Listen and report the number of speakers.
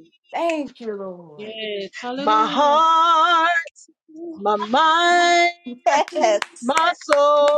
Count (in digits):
3